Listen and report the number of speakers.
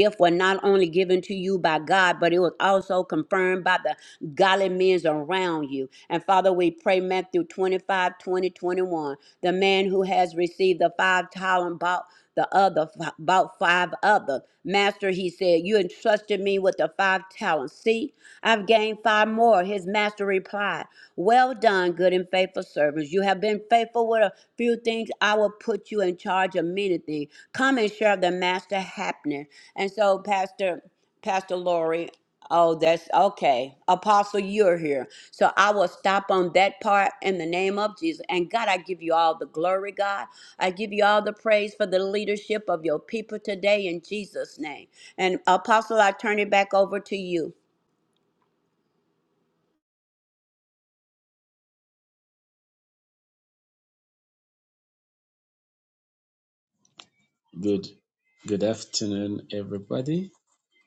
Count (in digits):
2